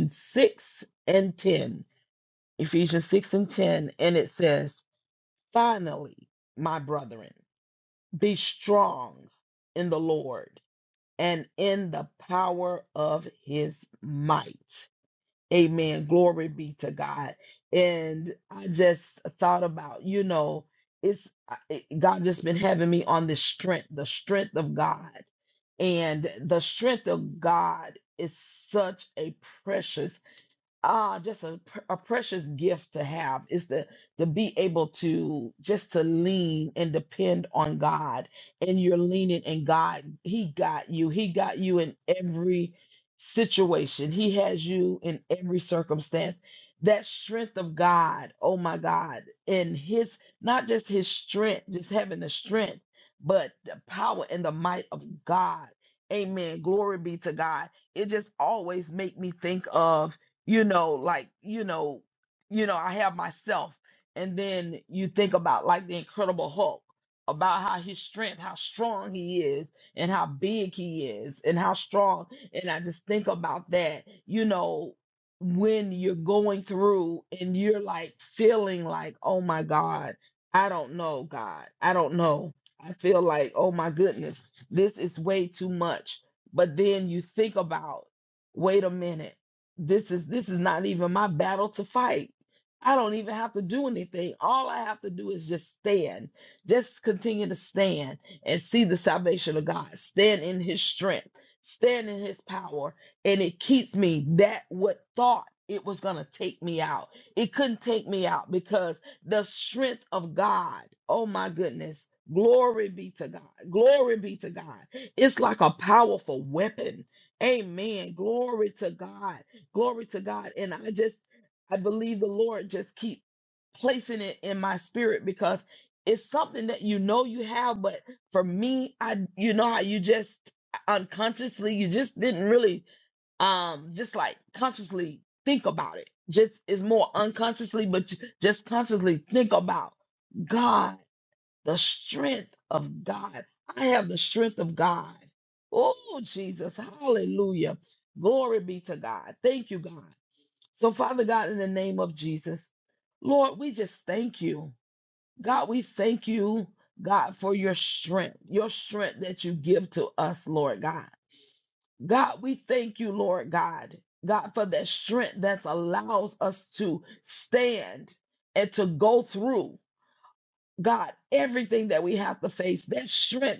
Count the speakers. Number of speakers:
1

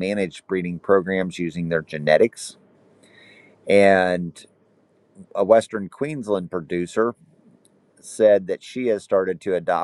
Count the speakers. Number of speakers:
1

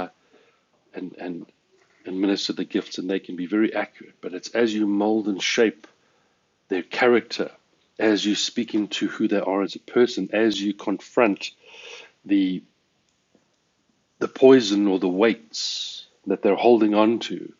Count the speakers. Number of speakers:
1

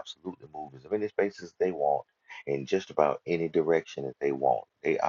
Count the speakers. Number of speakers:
1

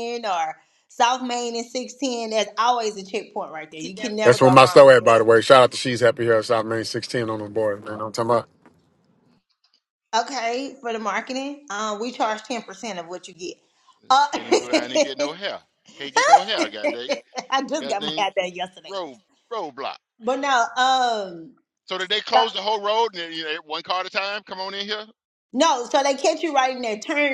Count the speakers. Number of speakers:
3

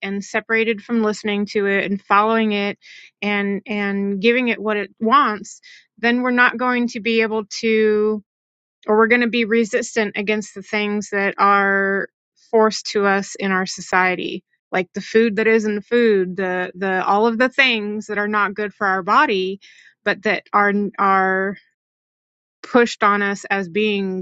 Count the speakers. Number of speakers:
1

